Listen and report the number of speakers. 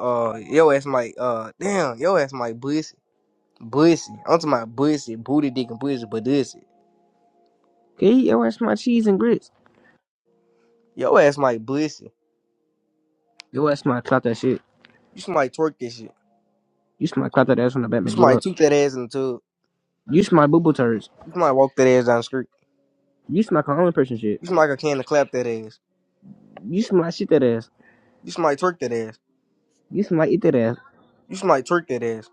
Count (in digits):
2